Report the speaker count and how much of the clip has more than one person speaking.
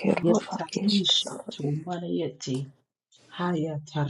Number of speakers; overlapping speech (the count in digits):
2, about 27%